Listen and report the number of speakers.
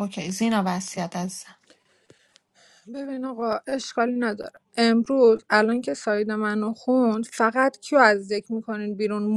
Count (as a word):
two